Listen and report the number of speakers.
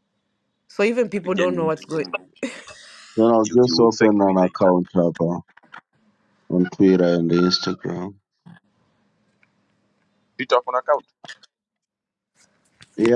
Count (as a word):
three